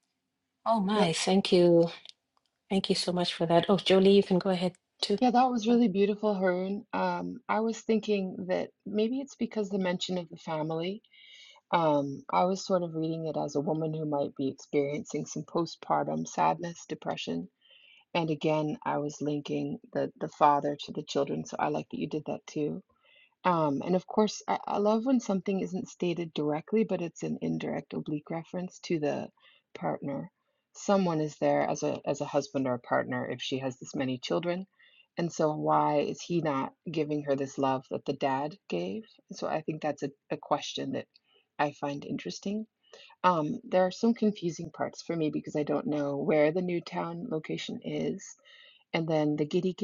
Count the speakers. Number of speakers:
2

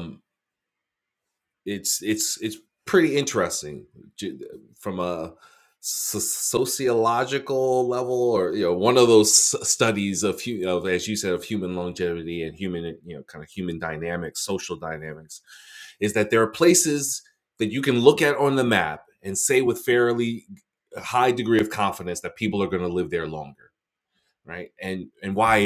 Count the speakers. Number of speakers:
1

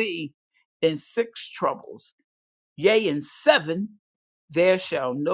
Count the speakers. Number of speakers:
1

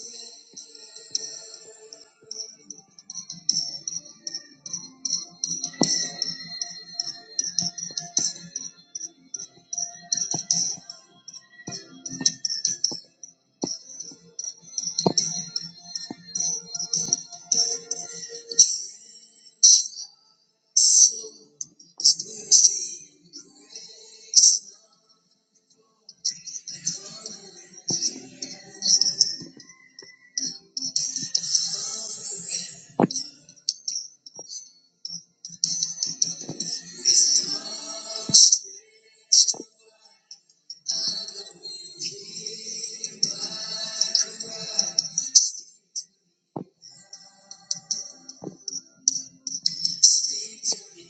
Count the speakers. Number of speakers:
0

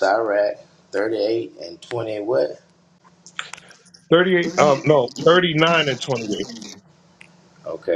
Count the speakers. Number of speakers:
2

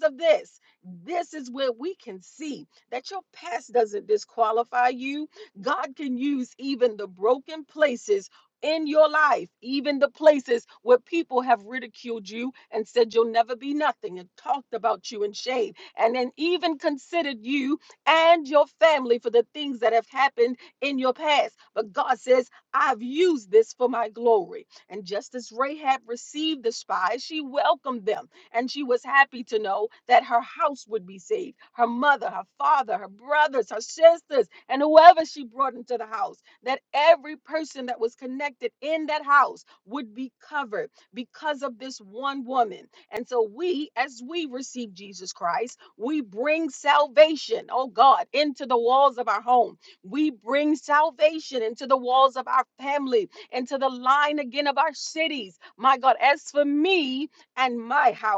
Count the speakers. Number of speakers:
1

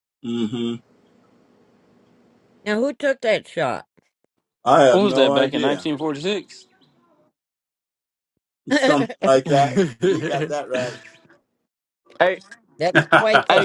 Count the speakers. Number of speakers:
3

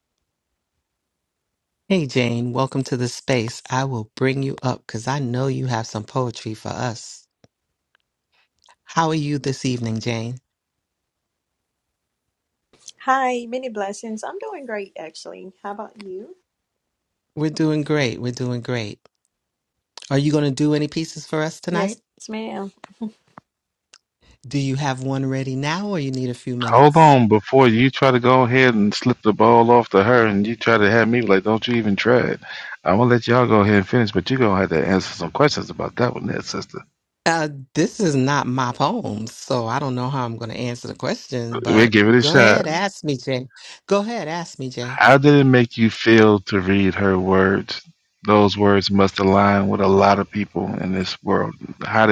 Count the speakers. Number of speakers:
3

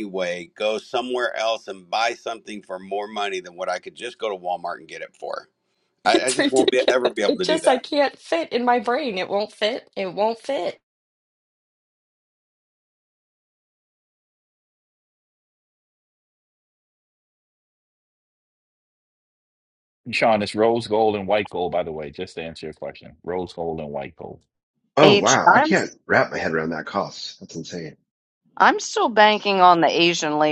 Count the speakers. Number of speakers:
5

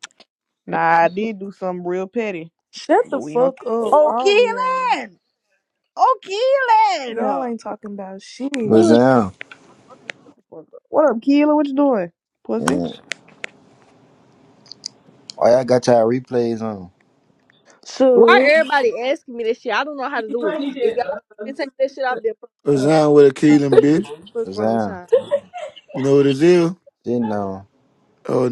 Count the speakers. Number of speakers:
5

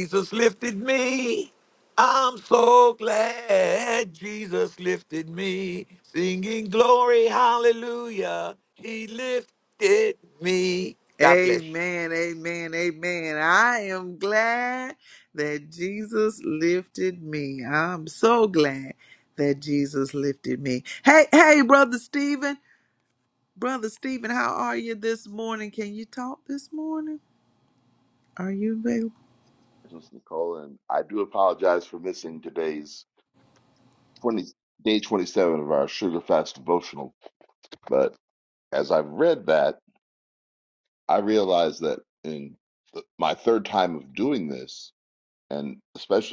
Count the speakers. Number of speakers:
3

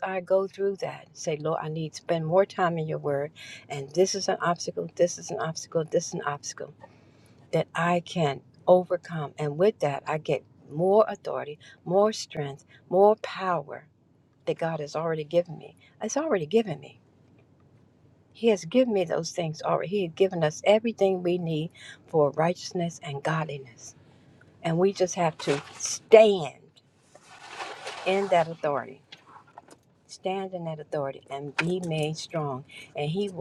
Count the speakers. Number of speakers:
1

